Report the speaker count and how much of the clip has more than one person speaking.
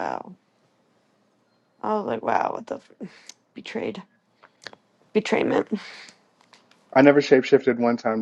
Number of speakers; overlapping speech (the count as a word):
two, no overlap